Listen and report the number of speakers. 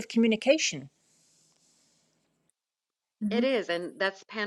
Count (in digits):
2